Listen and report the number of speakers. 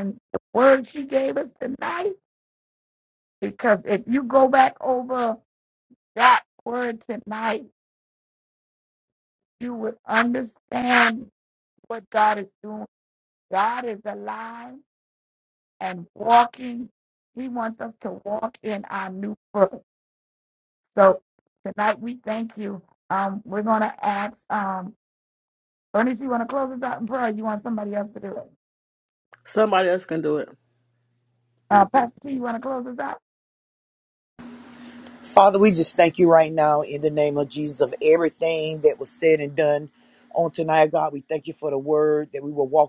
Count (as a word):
three